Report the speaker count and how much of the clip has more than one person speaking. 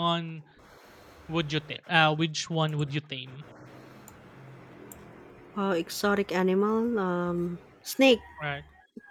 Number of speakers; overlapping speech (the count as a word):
two, no overlap